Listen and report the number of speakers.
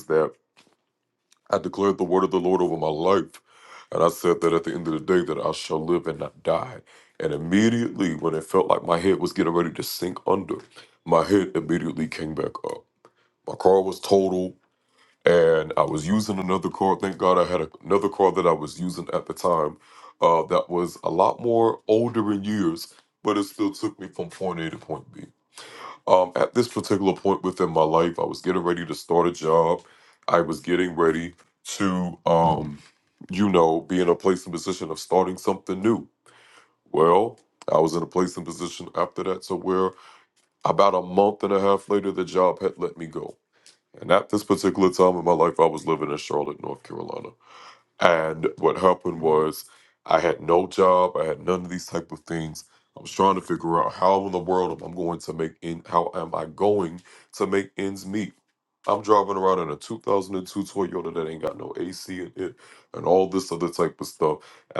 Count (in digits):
1